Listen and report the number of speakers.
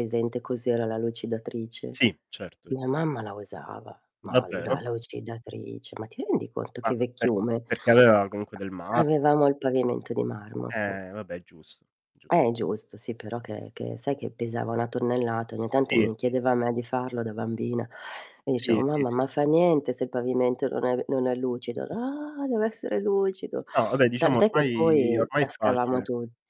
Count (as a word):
two